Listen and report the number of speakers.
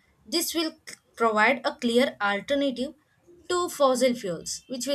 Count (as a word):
one